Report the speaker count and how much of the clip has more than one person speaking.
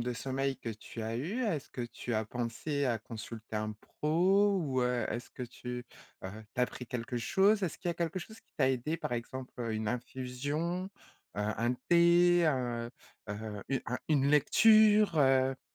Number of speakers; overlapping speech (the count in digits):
1, no overlap